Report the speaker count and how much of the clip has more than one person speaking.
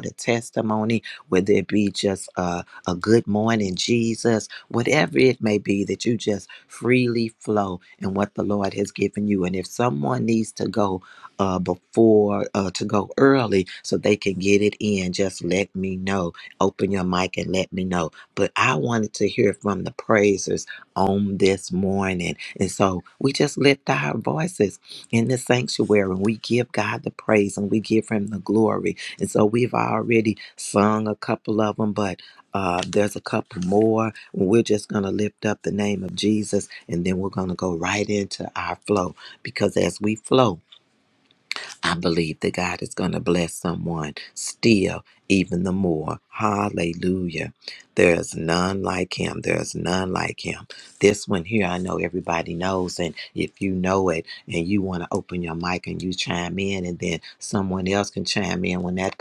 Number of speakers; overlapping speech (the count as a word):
one, no overlap